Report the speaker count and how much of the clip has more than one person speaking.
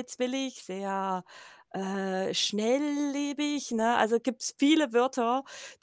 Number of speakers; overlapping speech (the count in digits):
1, no overlap